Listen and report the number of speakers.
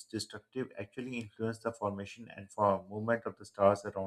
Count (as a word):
one